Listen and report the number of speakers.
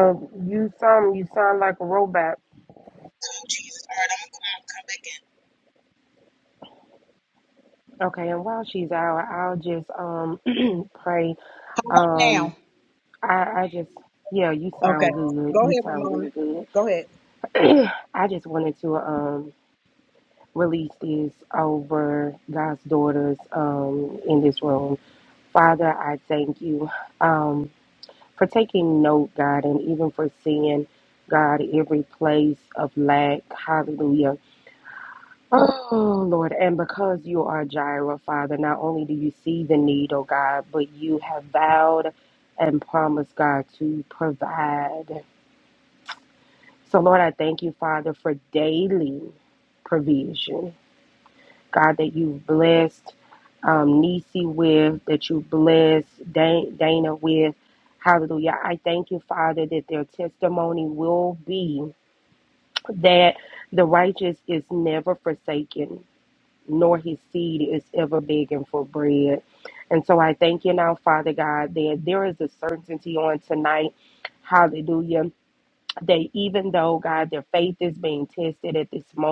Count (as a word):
two